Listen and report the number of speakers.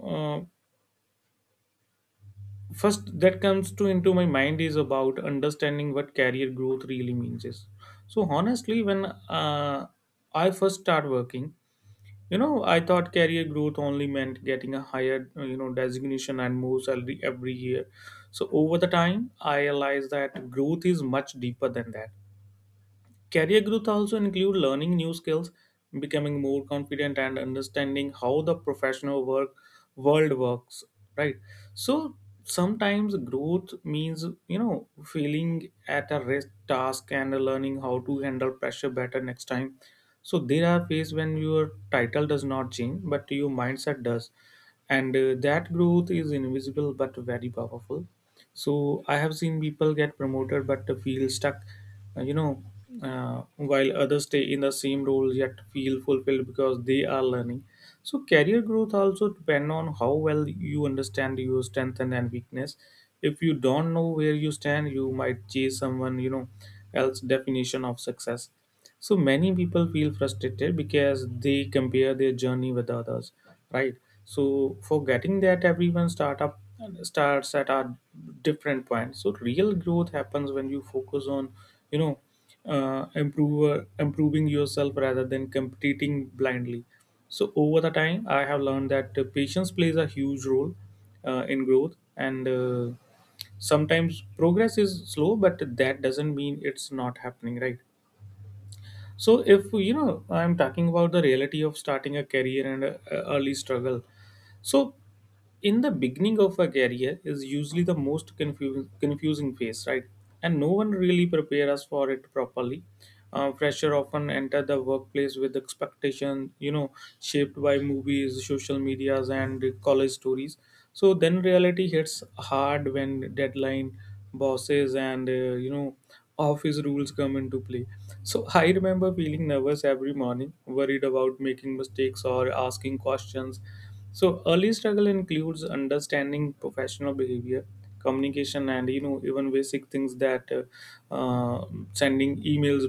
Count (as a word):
one